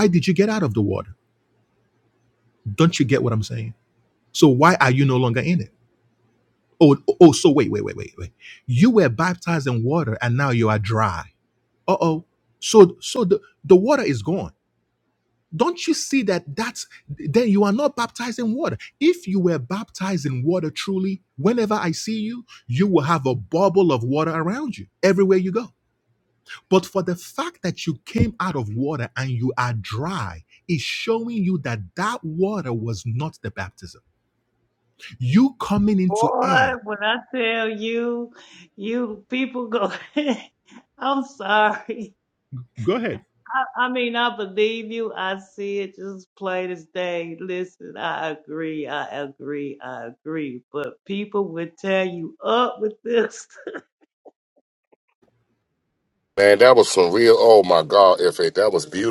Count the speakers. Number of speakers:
3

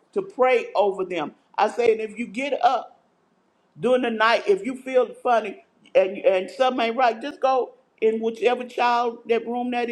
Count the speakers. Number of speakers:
1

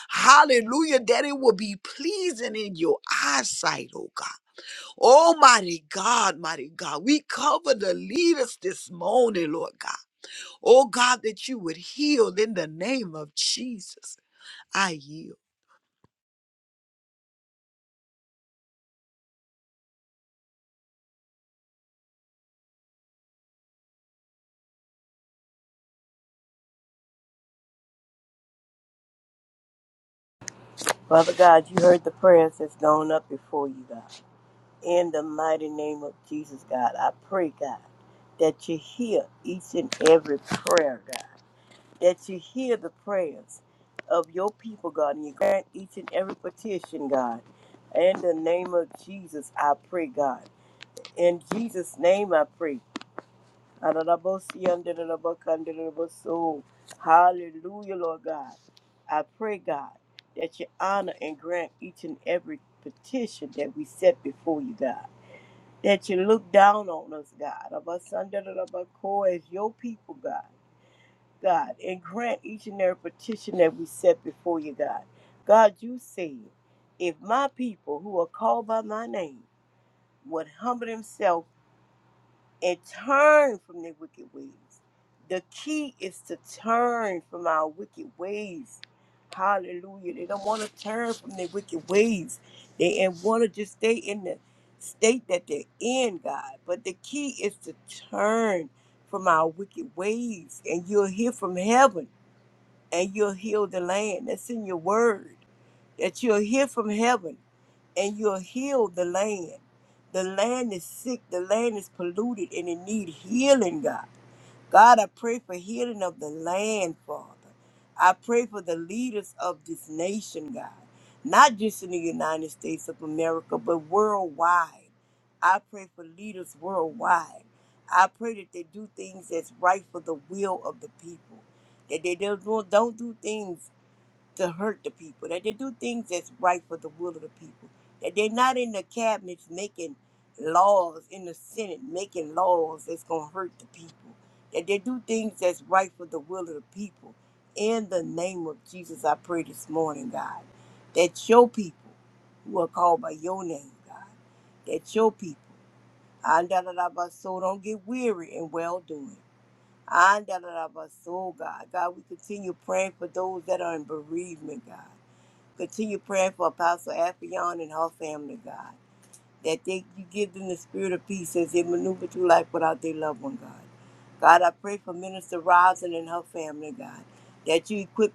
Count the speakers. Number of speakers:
2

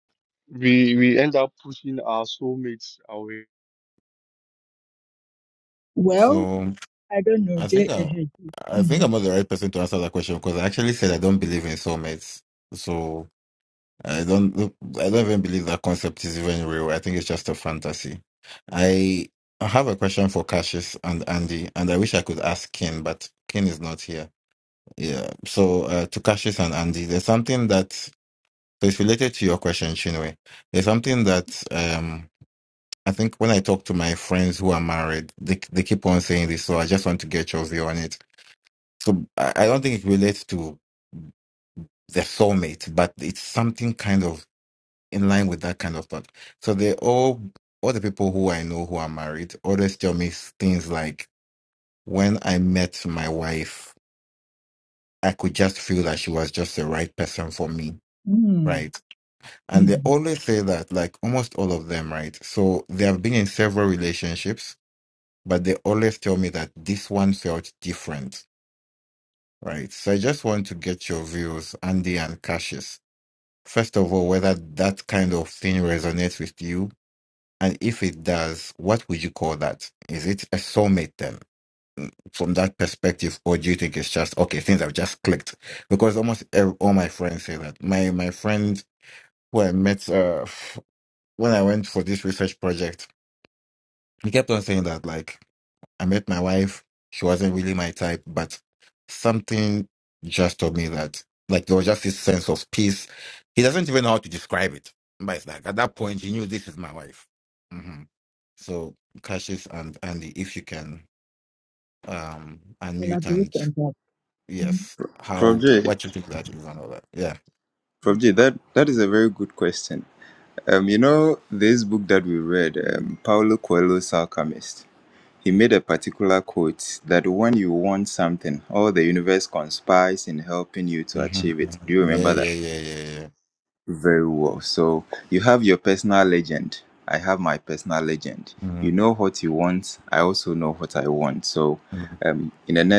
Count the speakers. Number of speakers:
4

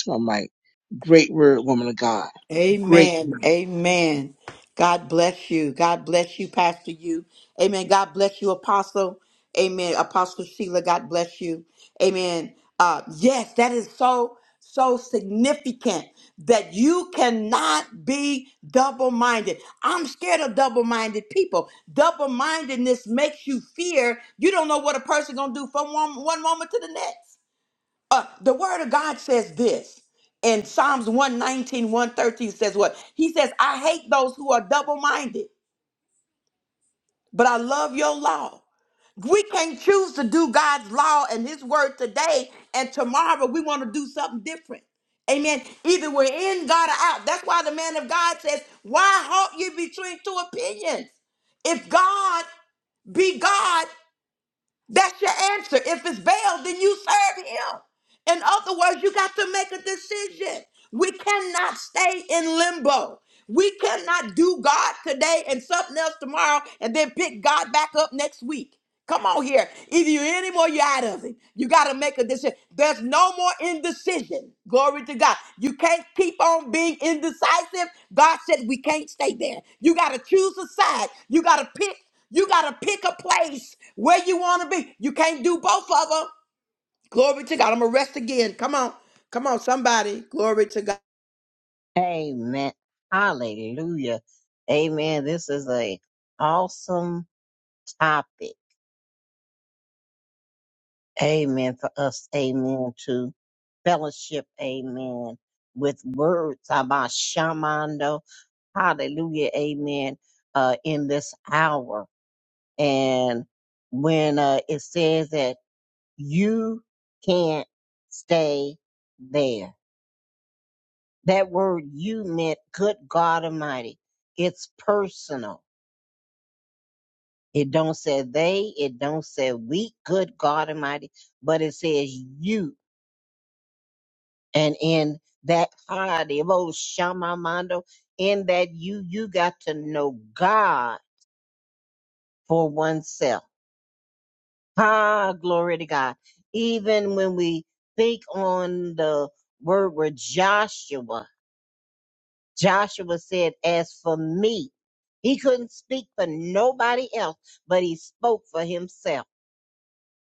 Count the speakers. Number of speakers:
3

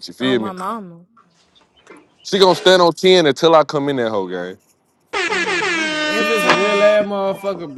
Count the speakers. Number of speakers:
3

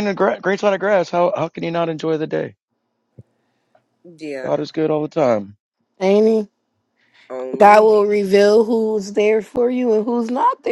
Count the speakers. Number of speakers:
3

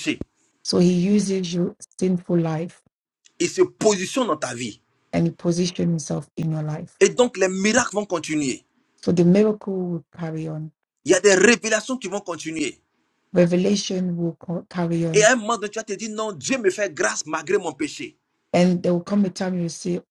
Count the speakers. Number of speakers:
2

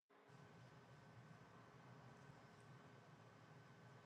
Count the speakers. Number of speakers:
0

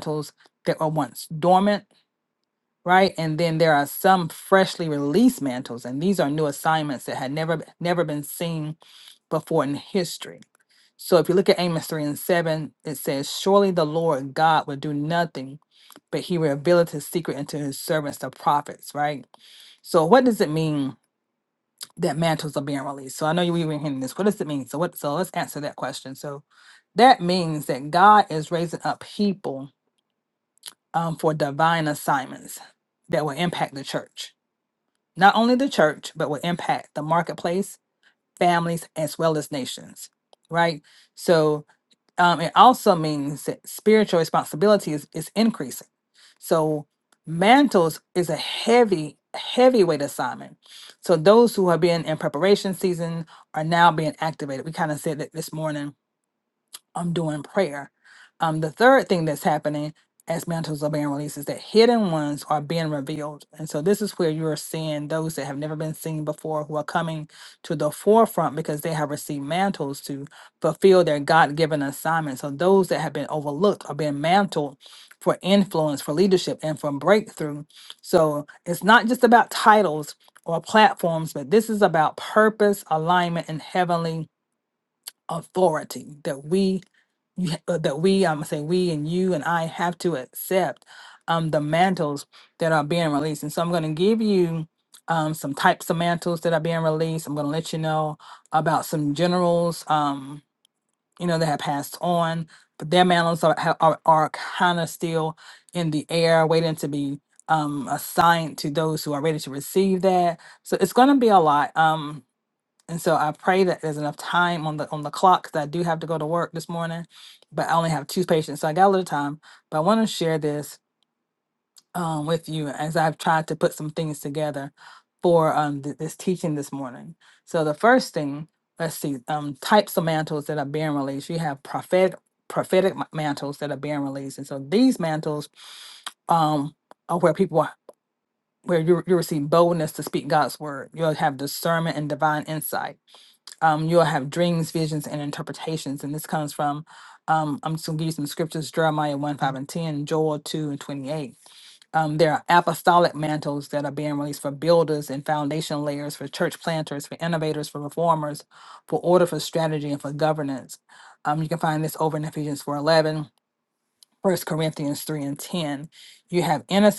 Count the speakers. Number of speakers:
1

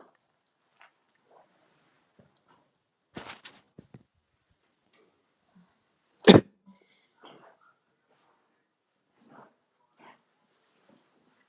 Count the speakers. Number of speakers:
0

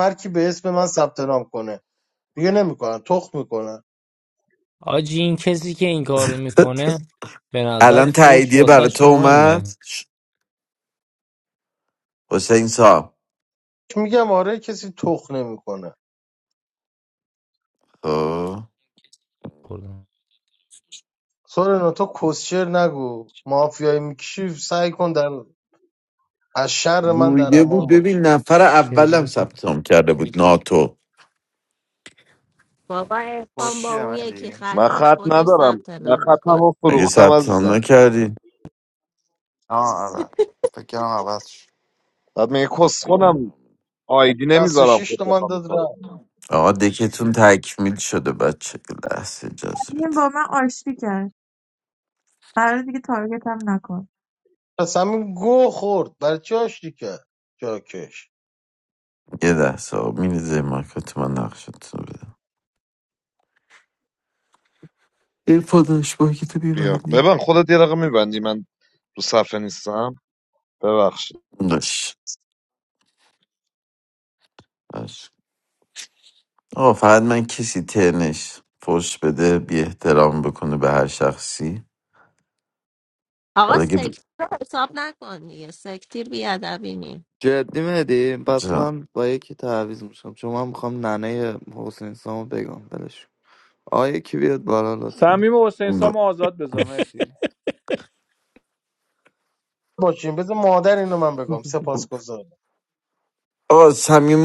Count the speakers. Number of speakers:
8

